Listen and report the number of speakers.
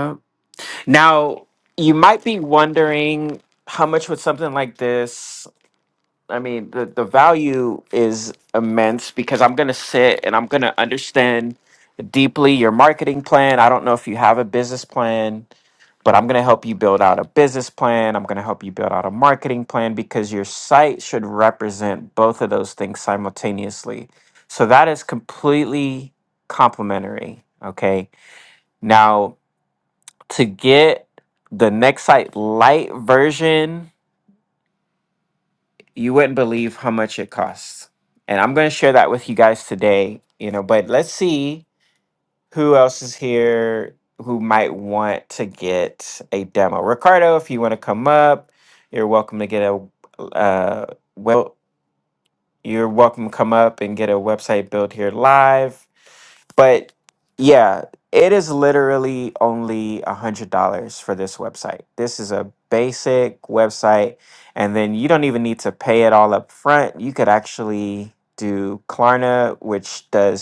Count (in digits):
1